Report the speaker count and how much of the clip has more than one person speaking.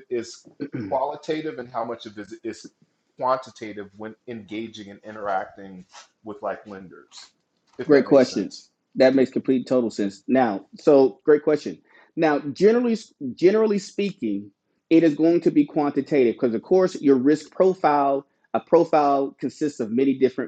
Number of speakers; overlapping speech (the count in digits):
2, about 3%